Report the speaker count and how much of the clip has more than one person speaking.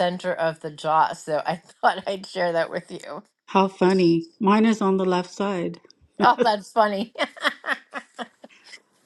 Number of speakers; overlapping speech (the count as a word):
two, no overlap